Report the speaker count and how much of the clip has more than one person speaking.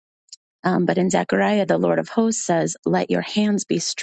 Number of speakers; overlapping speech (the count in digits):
1, no overlap